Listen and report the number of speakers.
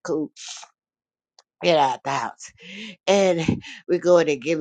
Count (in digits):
1